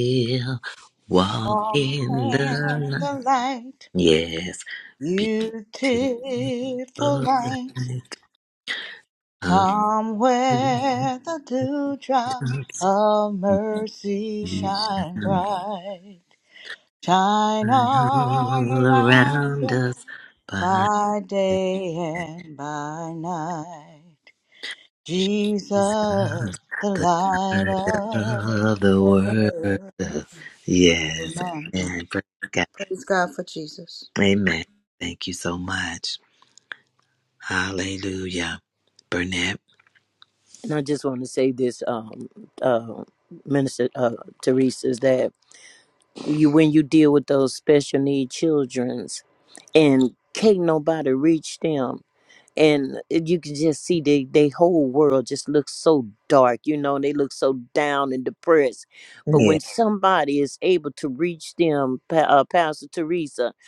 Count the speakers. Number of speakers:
3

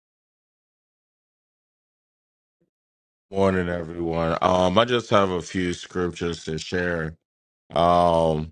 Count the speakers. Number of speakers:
1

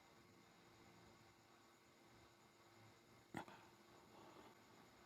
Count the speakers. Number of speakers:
0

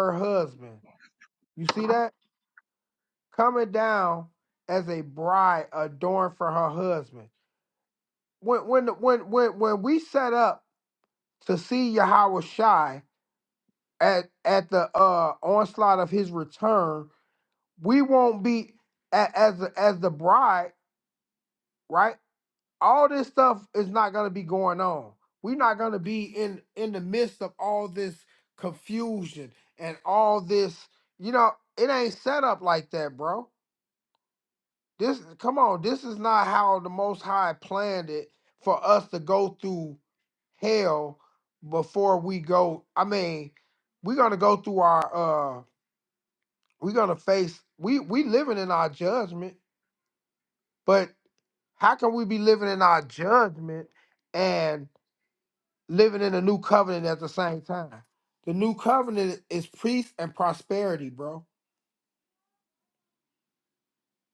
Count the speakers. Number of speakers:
1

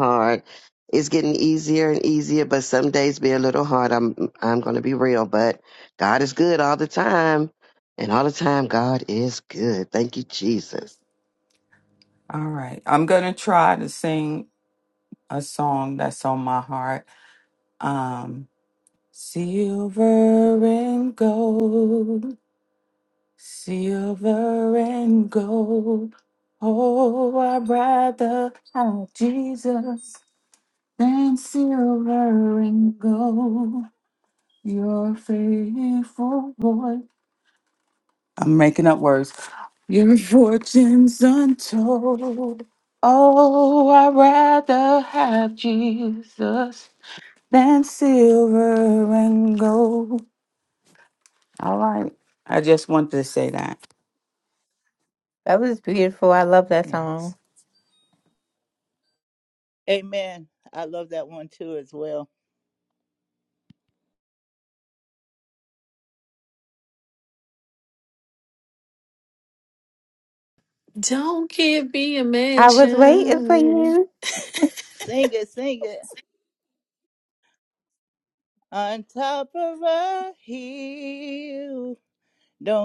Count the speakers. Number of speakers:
5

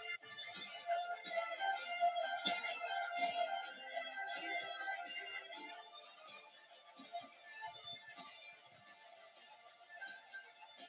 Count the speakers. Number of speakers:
0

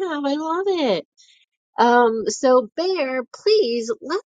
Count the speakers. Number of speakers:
1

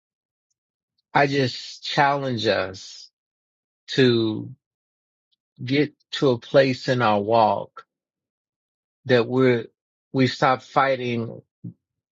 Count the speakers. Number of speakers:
1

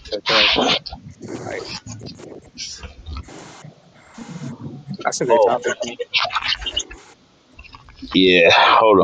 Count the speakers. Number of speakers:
2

